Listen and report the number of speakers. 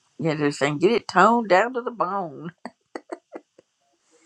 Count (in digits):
1